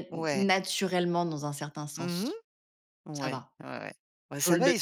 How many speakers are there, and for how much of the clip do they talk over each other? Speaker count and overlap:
two, about 27%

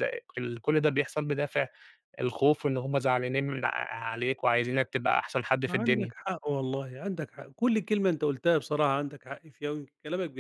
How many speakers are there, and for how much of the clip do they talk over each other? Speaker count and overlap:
two, about 4%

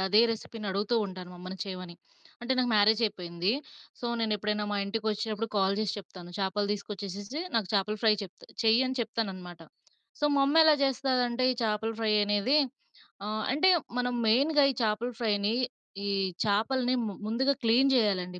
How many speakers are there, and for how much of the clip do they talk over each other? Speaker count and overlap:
one, no overlap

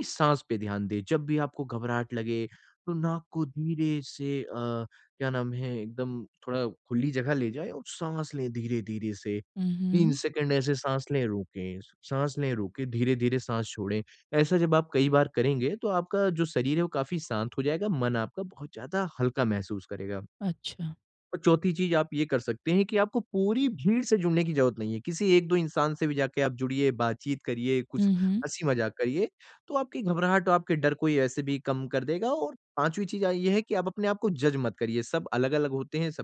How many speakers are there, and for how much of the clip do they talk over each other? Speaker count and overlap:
two, about 2%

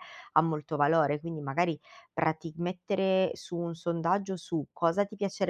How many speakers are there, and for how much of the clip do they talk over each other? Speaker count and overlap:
one, no overlap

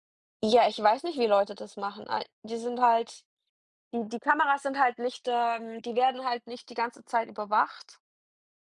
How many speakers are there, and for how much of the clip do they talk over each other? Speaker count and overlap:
one, no overlap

